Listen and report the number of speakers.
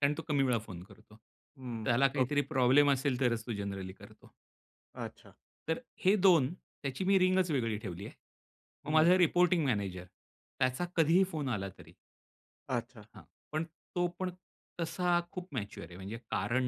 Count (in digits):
2